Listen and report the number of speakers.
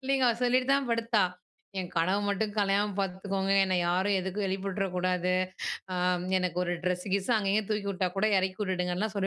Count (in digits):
1